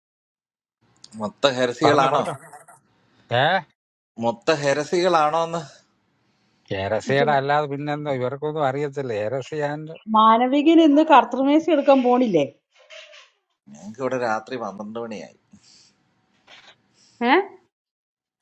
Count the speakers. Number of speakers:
three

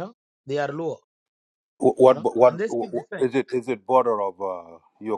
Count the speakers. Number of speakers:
two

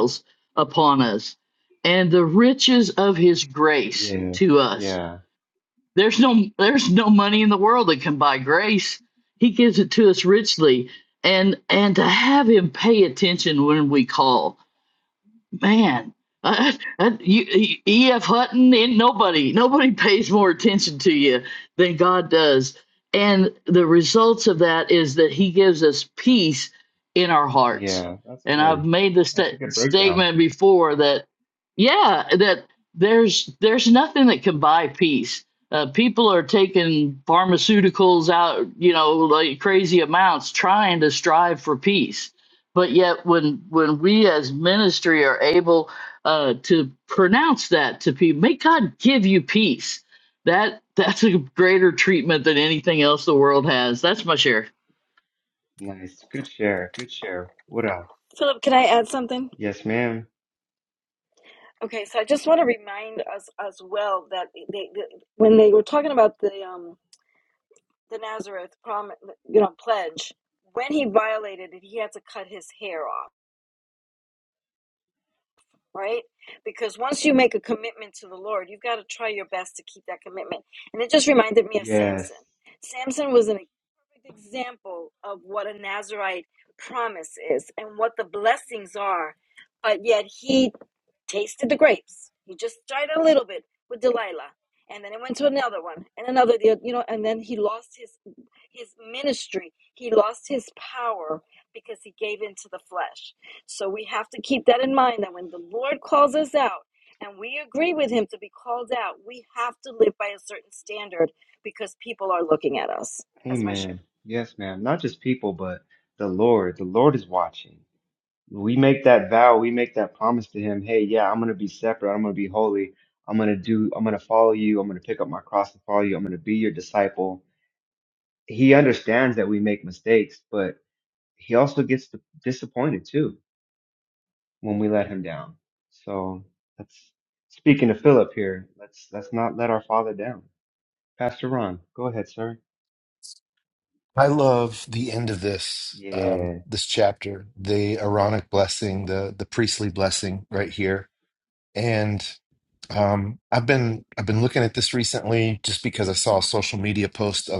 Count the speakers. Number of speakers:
four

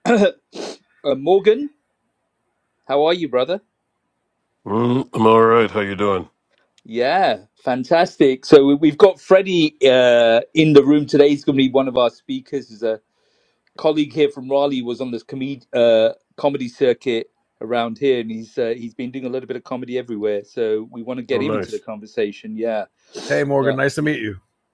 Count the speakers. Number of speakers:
three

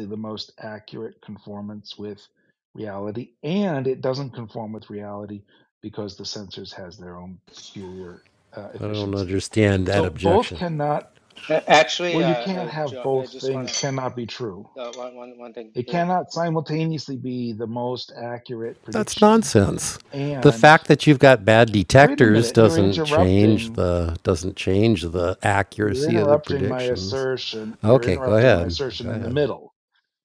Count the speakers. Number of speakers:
three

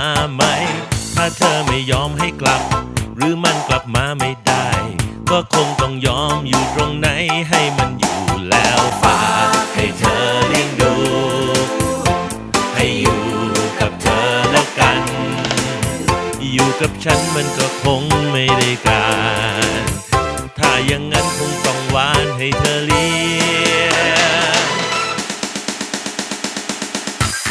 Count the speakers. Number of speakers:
one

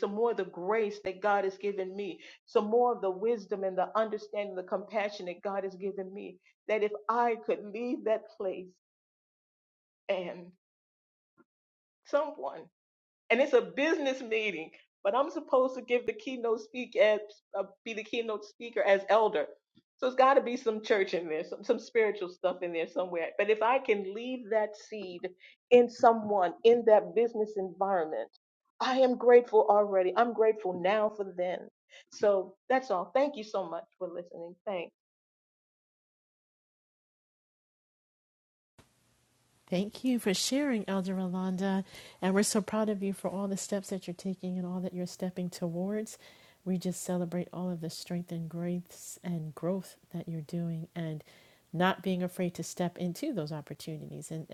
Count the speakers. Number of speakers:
two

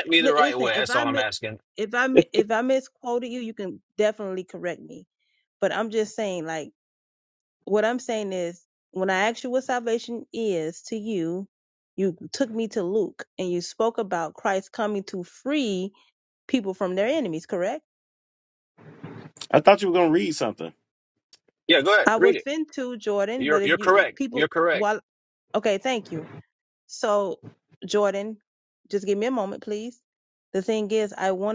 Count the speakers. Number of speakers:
three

